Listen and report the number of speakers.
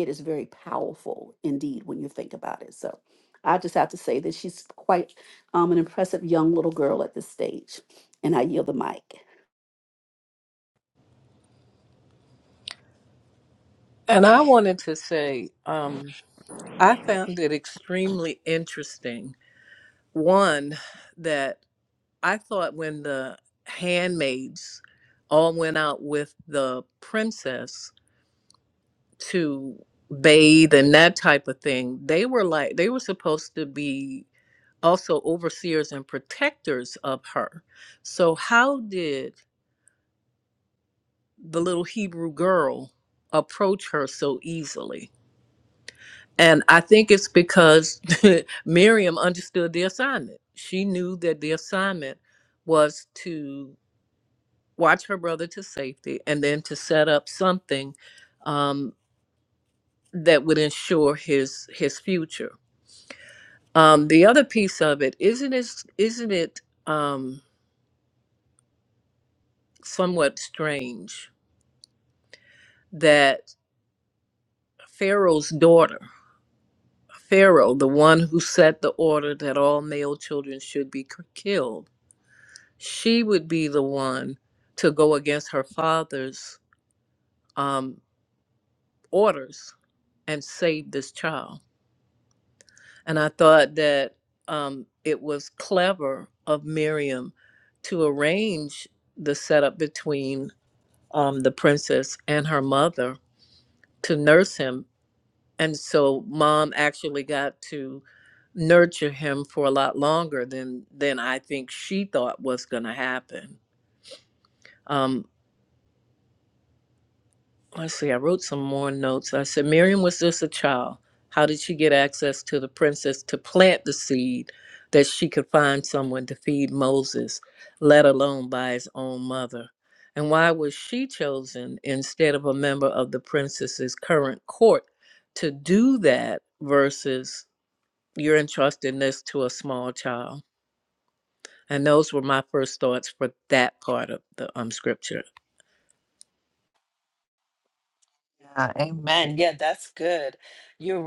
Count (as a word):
three